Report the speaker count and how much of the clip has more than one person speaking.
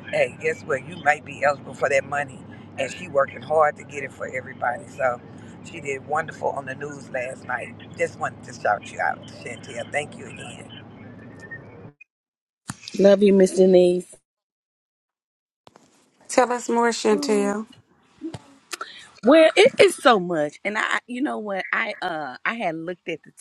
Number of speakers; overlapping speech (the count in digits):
3, about 2%